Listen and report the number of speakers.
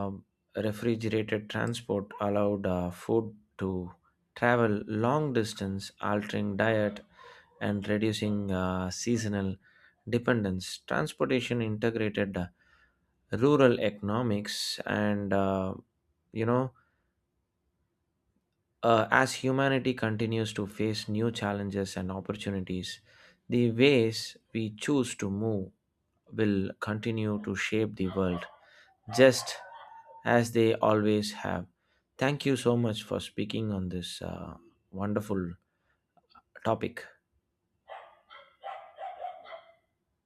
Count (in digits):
1